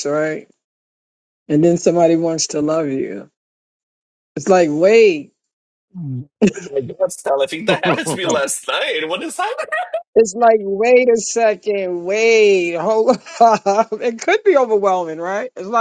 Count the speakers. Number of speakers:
two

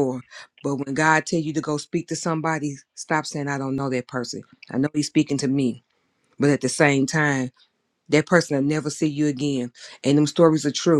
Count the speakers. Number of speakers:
one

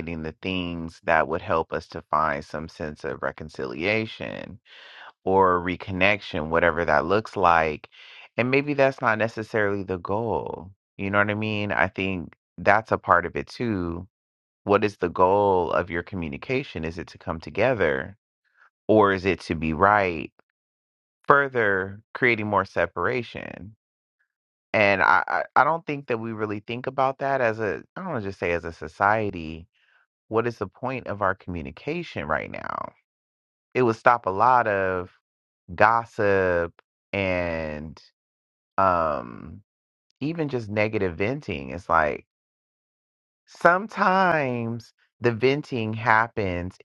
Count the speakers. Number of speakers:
one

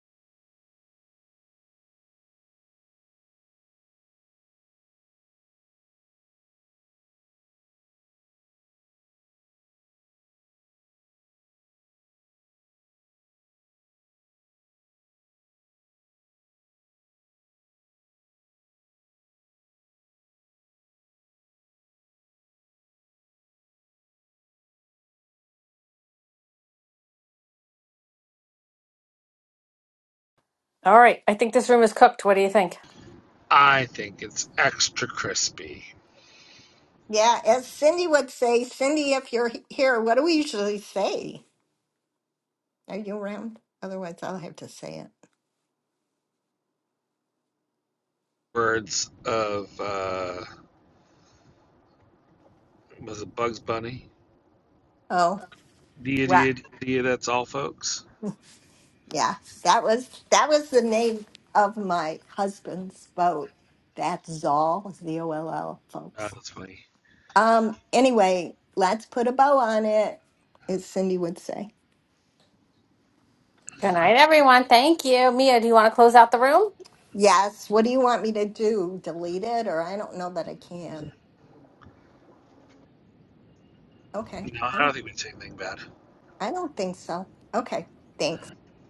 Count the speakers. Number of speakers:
three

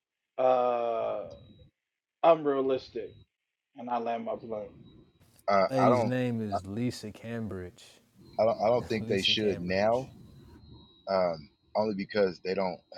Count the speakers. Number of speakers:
three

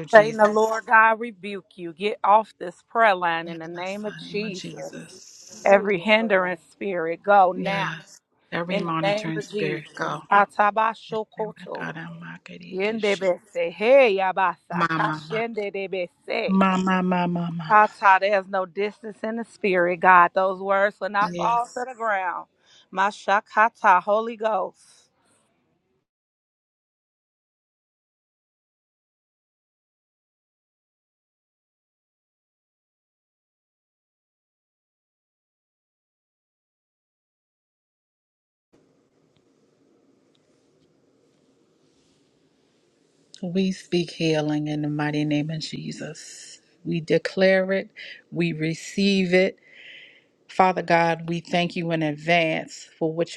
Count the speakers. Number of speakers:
two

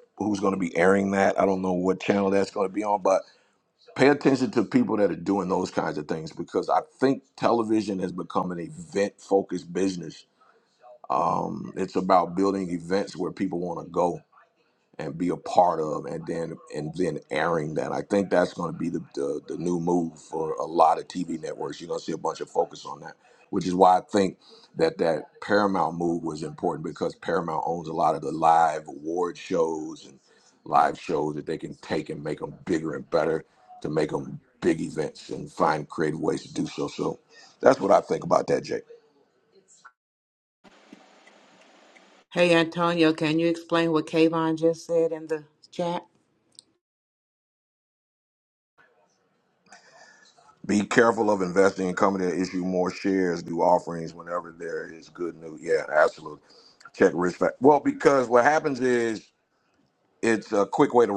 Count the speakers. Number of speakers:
two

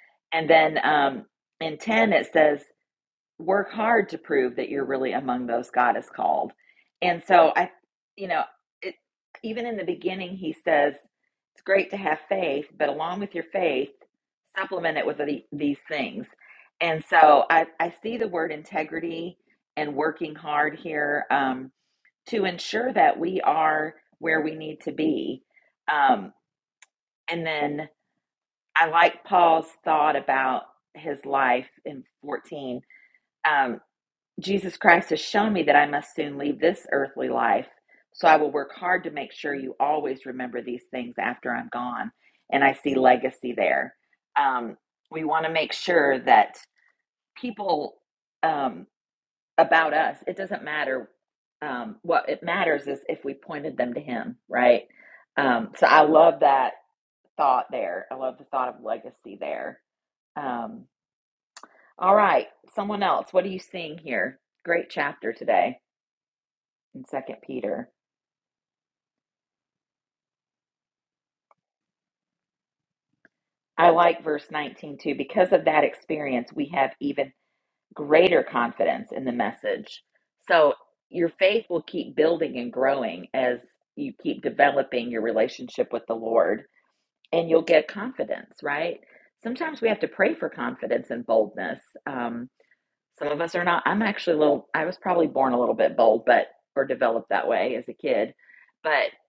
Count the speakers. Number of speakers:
one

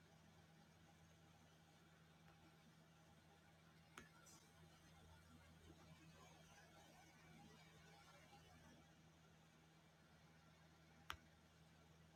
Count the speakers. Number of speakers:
zero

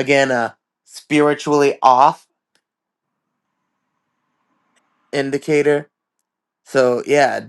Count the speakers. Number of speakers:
one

